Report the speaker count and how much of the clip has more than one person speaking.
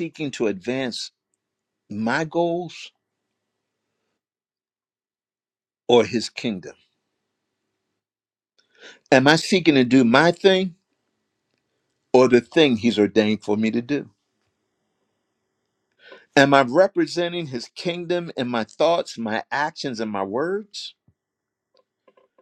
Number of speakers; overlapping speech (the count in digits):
1, no overlap